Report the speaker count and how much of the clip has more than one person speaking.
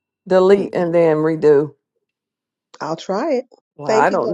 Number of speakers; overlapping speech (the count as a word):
two, about 17%